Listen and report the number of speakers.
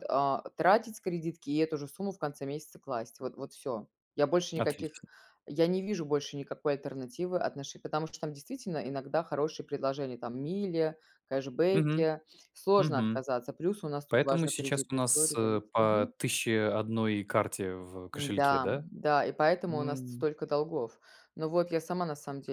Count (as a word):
two